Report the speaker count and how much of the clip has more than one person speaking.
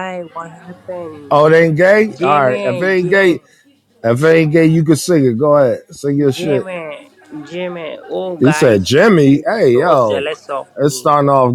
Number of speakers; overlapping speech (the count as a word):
two, about 34%